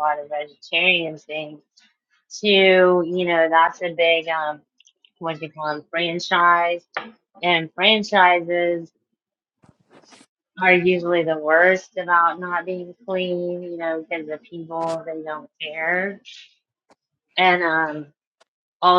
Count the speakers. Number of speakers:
1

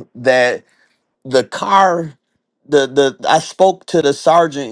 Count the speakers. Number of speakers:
1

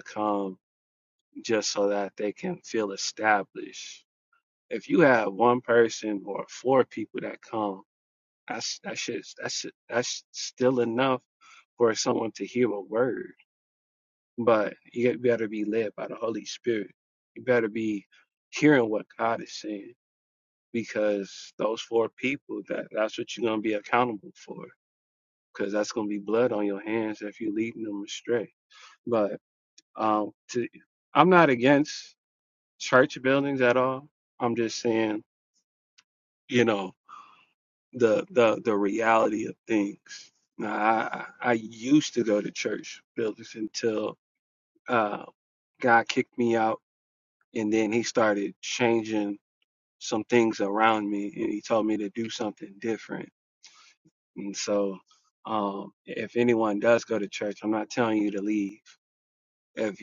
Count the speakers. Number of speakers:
1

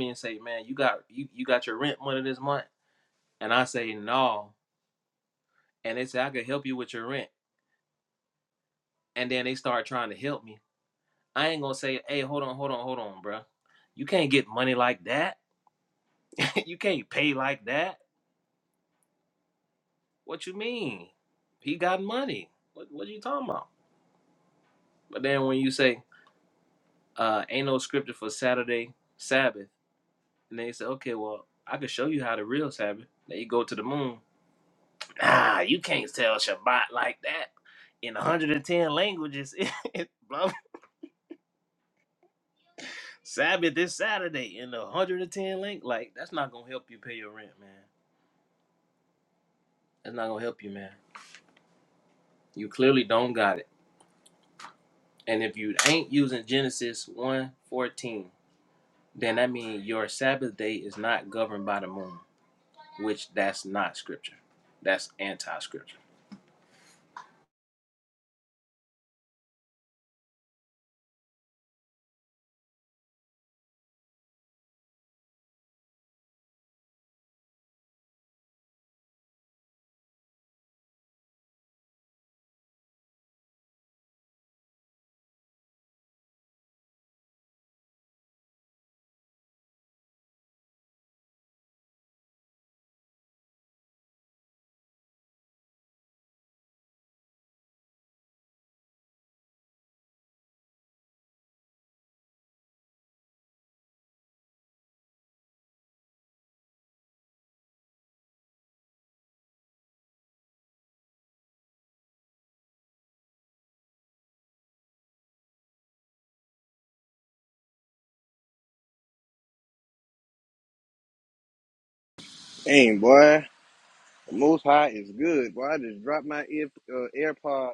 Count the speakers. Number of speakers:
2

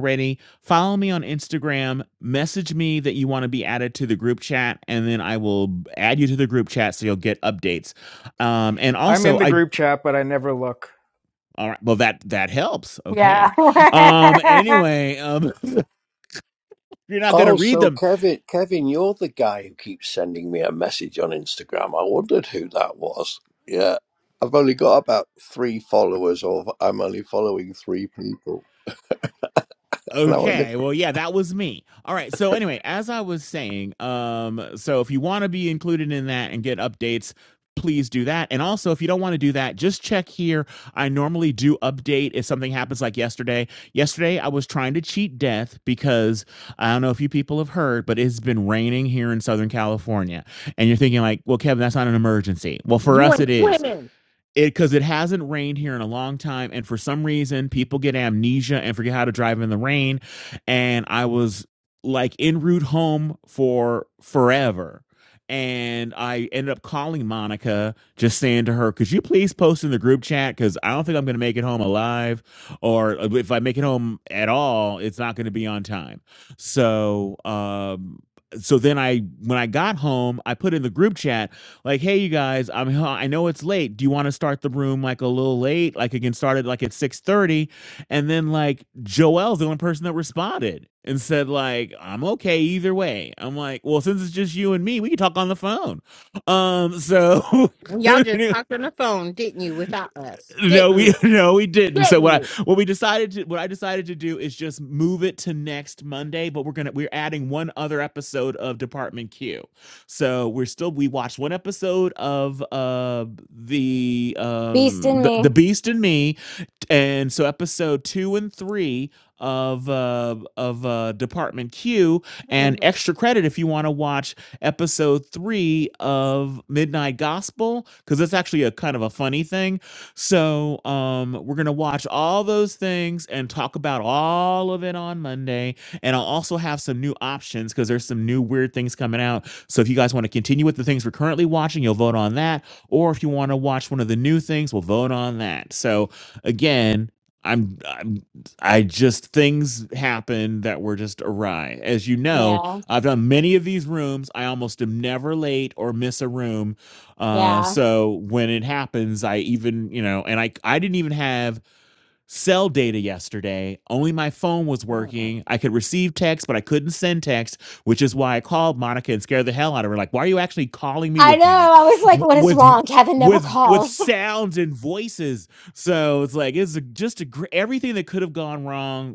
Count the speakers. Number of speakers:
5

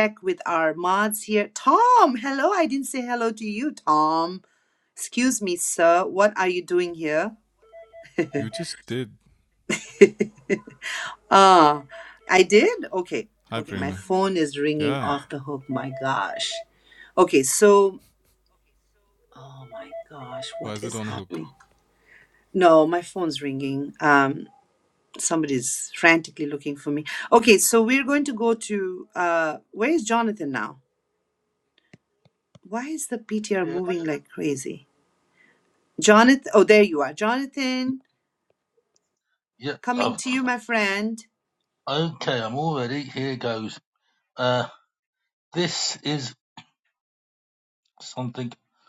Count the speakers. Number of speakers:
3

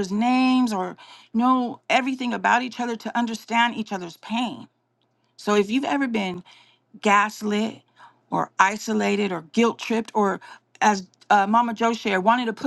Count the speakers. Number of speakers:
1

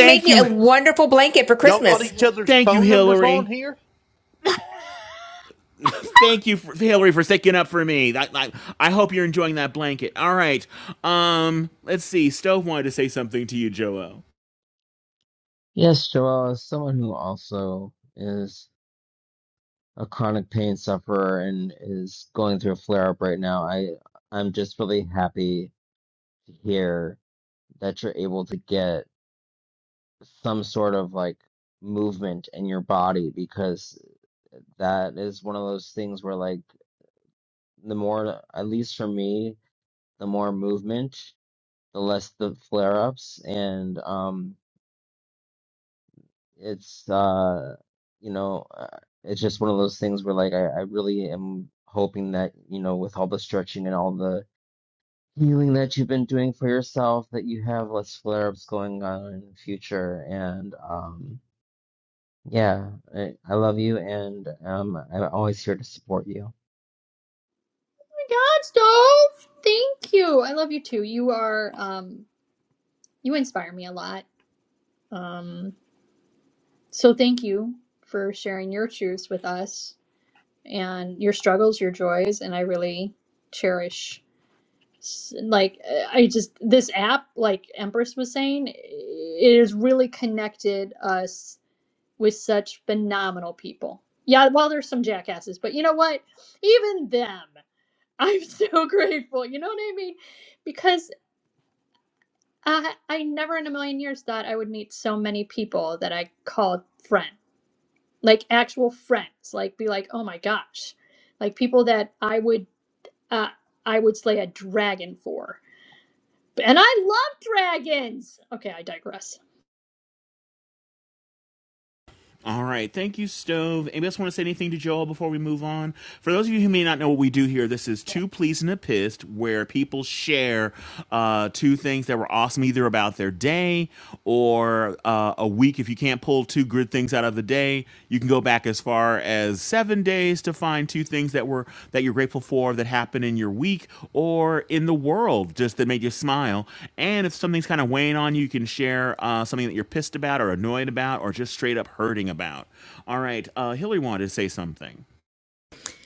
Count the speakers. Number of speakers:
5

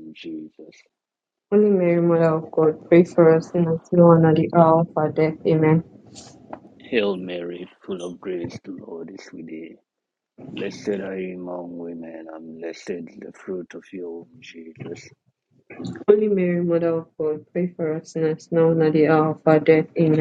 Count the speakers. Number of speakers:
2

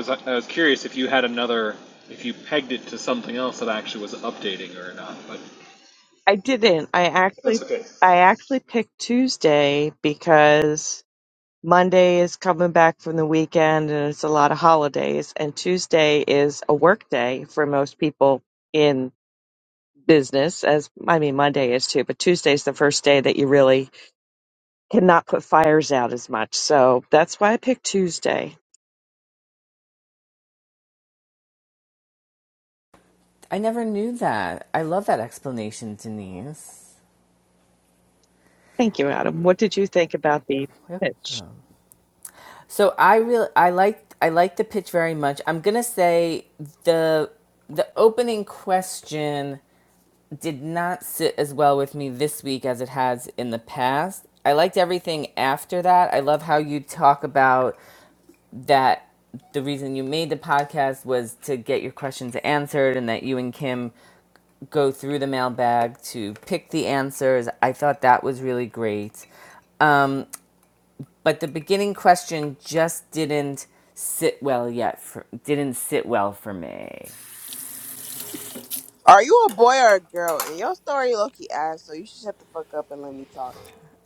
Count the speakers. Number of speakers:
4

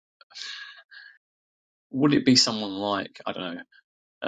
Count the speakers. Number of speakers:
1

